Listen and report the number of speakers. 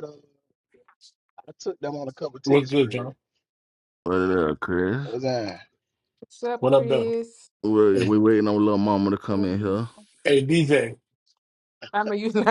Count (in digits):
4